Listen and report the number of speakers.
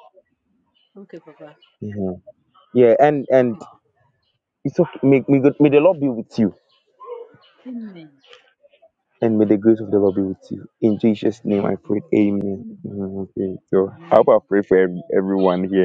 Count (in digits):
2